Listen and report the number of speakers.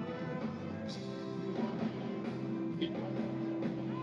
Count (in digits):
0